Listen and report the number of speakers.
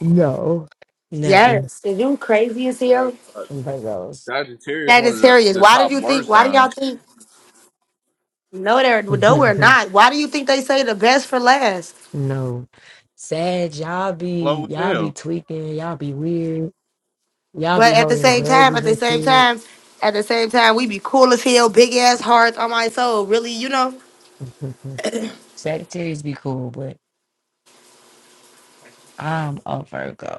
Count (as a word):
three